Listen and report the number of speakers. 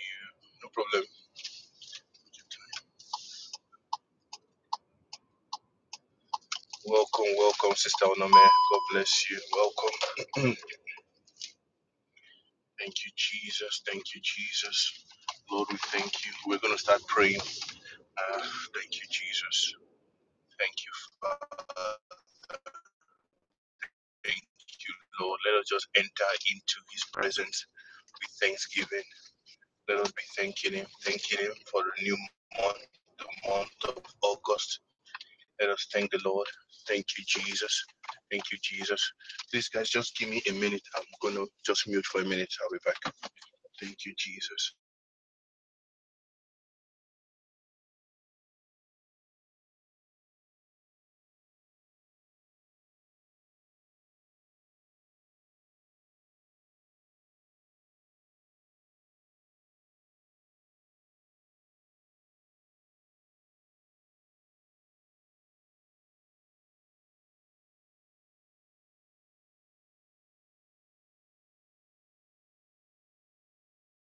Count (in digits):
1